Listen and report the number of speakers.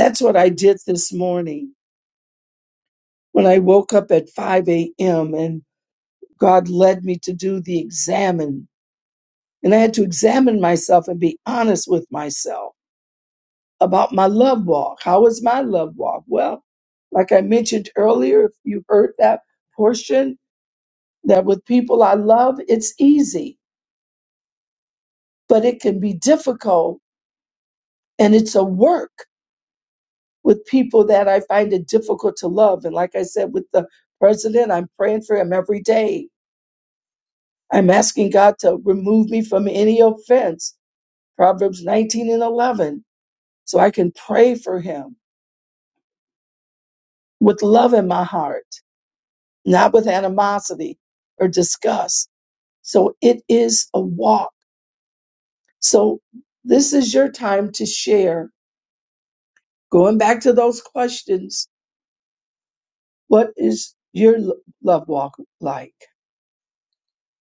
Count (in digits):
1